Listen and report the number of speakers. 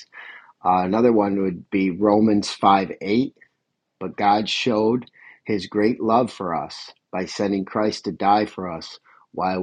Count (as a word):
one